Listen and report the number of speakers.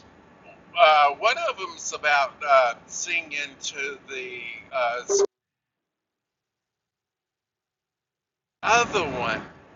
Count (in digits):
1